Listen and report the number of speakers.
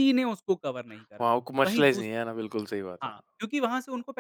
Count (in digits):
2